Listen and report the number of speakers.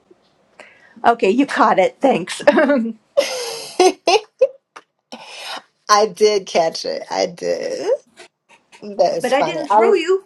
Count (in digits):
2